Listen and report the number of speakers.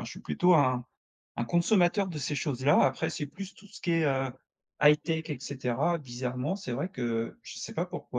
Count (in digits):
1